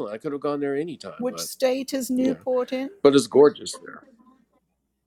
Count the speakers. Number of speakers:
2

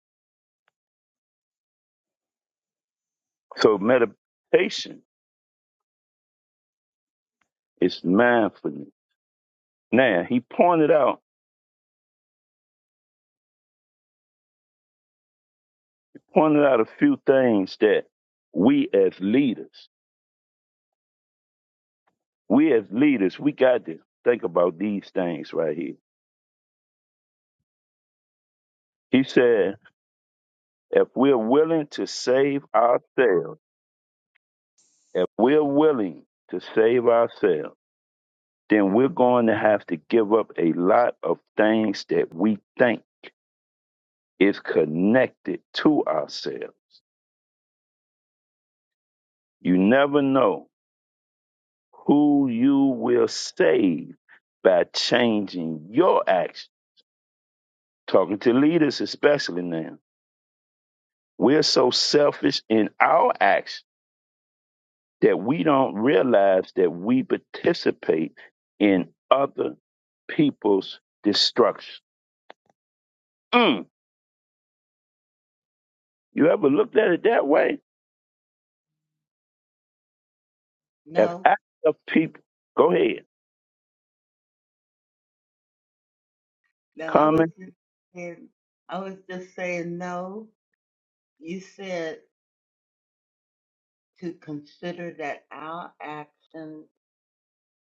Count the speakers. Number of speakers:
2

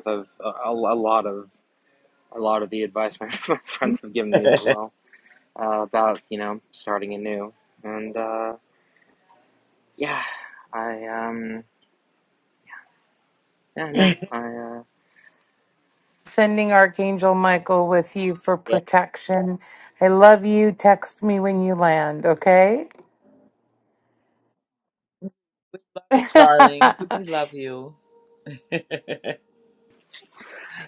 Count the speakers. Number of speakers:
3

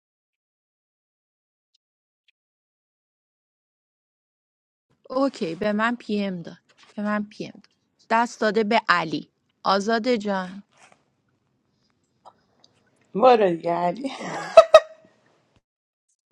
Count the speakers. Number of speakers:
2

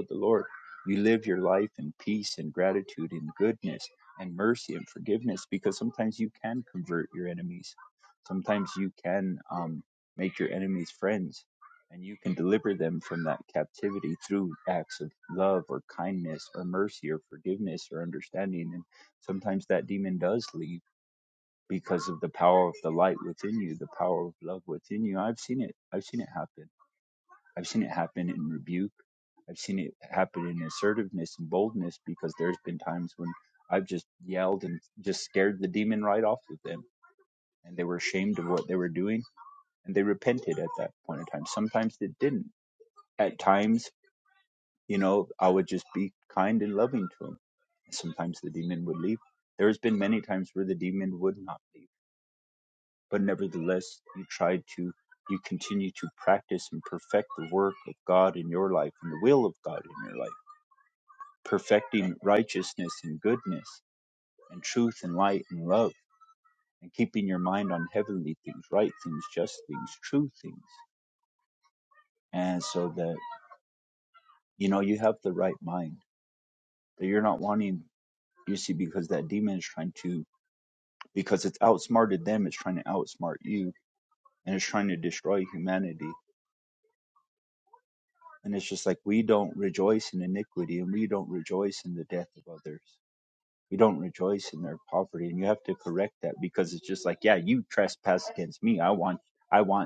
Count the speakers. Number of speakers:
1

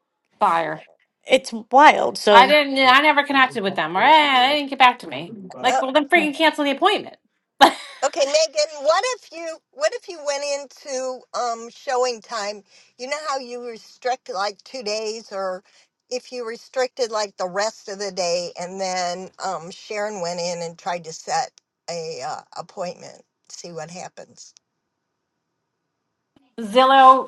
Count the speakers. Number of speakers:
3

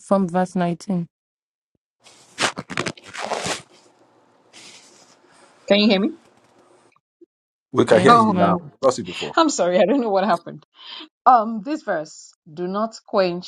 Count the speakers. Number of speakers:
3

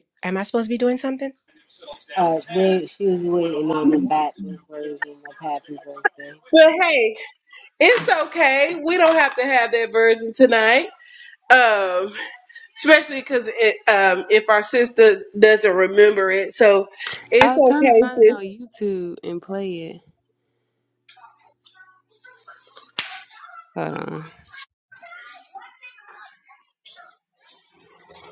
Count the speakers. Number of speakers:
4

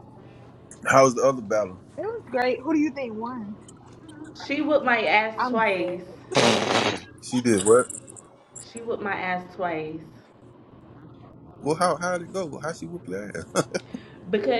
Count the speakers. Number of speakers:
3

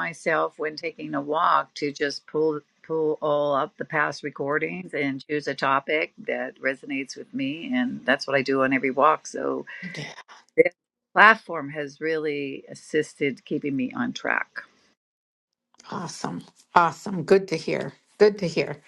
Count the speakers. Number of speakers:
2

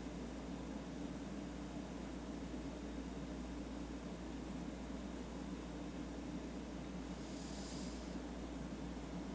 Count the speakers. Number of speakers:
0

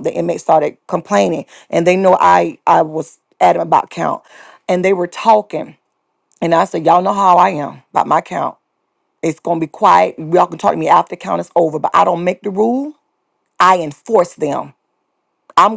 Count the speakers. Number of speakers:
1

